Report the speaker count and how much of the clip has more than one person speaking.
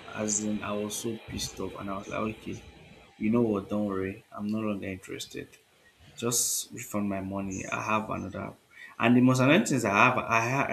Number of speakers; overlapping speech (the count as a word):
one, no overlap